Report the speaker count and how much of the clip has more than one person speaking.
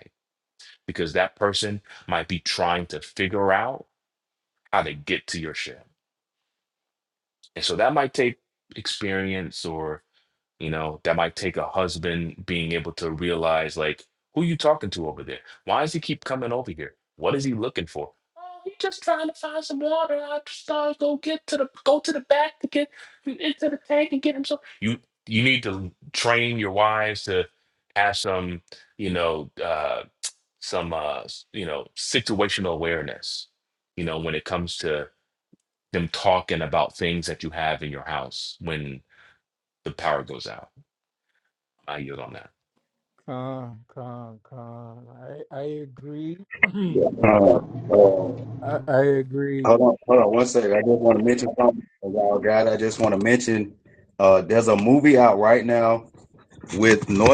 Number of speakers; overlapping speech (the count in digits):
3, under 1%